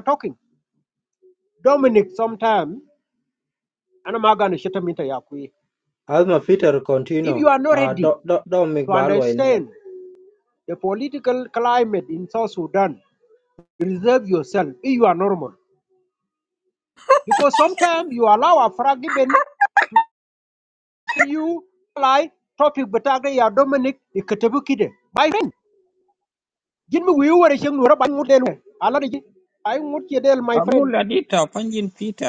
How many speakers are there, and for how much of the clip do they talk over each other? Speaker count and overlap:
3, about 6%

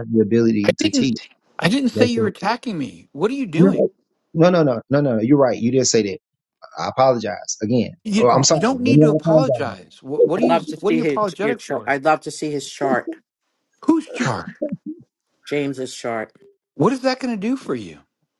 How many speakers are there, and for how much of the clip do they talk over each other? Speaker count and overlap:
3, about 24%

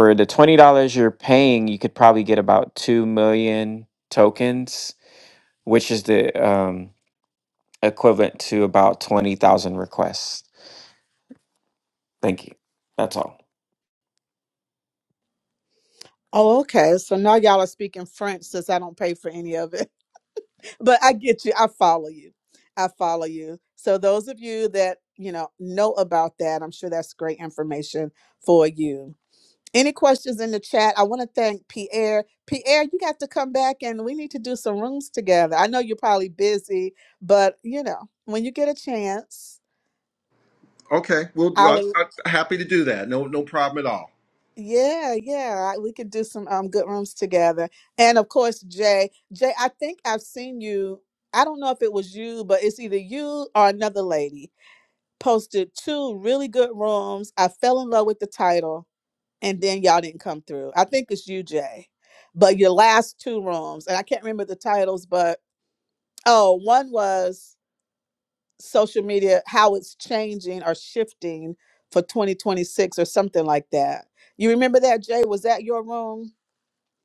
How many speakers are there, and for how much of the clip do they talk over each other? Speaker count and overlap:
3, under 1%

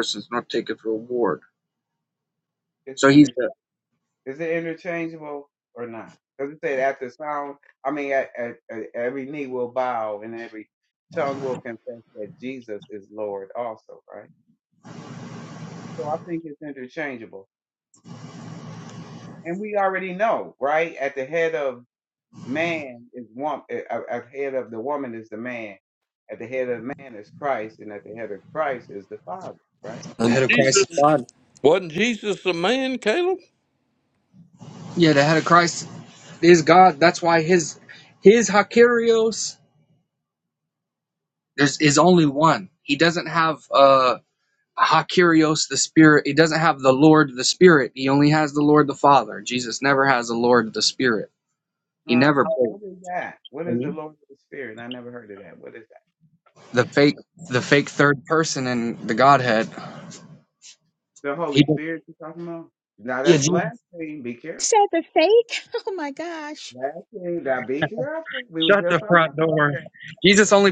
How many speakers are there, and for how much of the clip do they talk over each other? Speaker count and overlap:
4, about 5%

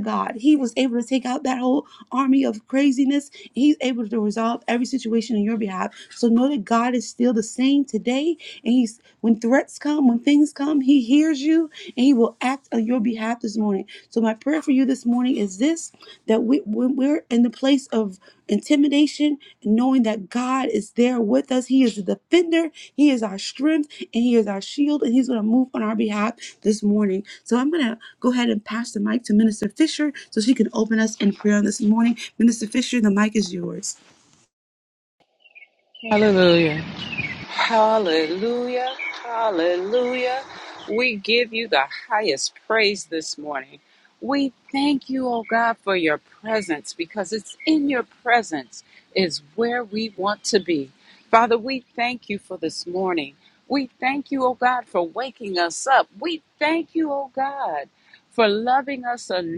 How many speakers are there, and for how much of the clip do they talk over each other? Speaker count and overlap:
2, no overlap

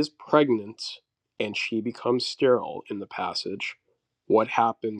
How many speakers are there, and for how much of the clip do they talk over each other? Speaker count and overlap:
1, no overlap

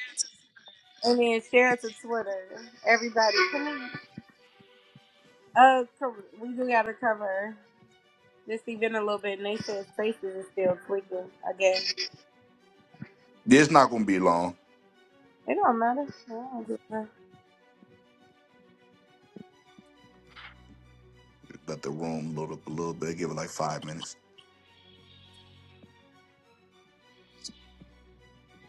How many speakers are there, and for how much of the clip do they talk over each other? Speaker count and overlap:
2, no overlap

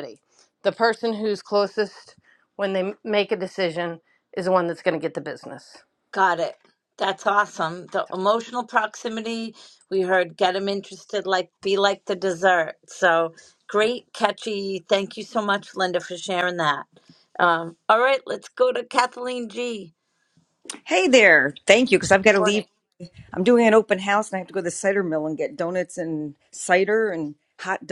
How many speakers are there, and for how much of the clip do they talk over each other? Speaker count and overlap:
3, about 1%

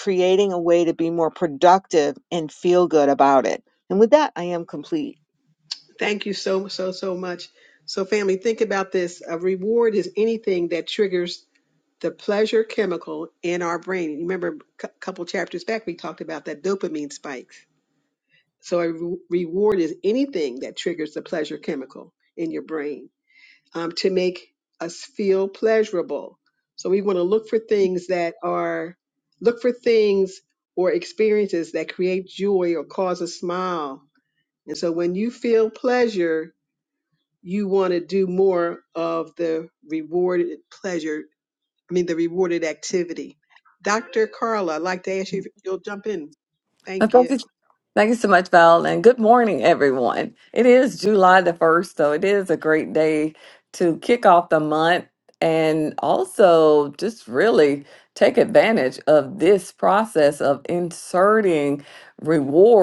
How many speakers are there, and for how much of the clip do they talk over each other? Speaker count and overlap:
3, about 1%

